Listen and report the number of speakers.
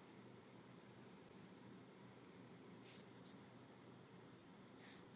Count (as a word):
zero